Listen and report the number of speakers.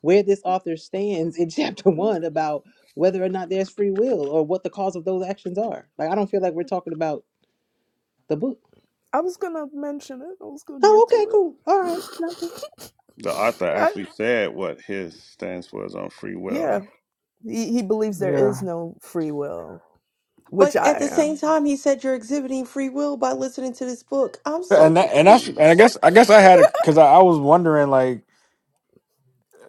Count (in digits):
5